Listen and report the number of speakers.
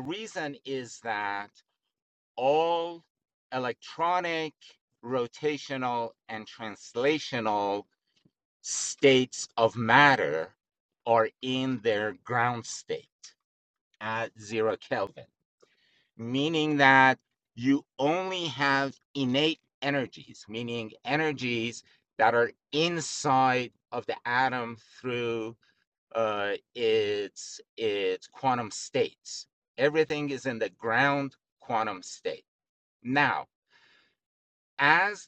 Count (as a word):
one